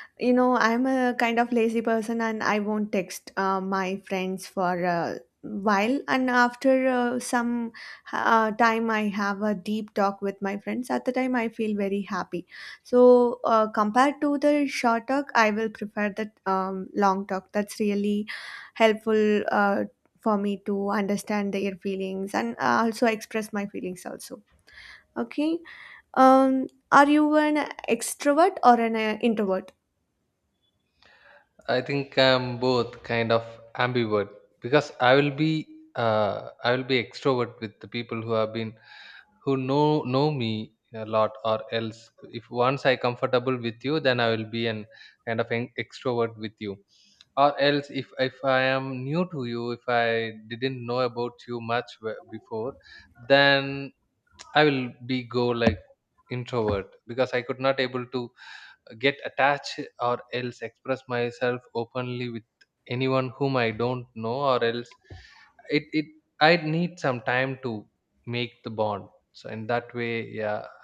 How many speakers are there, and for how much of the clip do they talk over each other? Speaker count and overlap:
two, no overlap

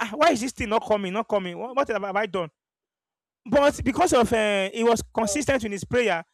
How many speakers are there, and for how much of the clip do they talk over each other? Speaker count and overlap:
one, no overlap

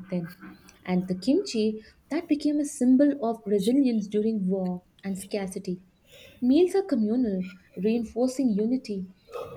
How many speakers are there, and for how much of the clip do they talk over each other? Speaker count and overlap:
one, no overlap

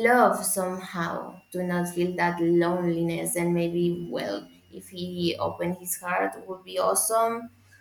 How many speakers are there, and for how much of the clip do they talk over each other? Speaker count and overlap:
one, no overlap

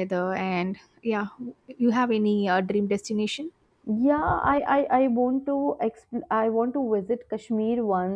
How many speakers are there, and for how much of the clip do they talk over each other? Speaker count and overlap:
two, no overlap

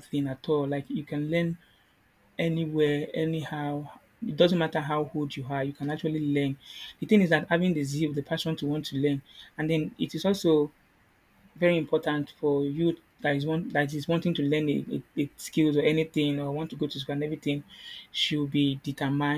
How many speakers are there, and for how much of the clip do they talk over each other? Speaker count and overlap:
one, no overlap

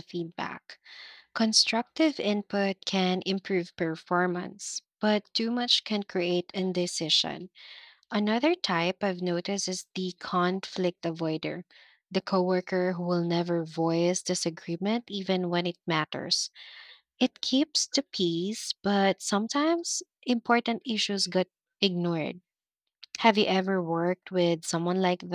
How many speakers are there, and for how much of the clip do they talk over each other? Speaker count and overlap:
one, no overlap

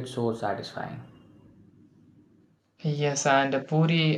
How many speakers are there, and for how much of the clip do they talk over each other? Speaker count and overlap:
two, no overlap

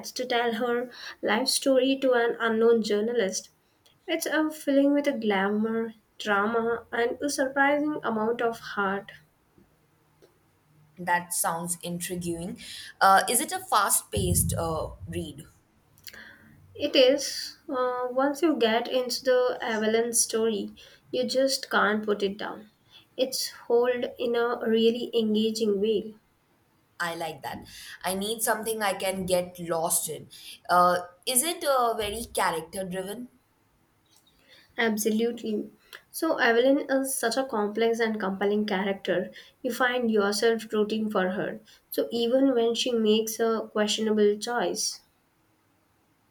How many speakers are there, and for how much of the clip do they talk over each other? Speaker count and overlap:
two, no overlap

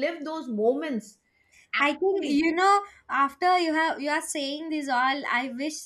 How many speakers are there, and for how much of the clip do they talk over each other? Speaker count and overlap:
two, about 10%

